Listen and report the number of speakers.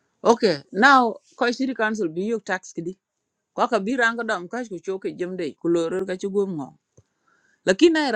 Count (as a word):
one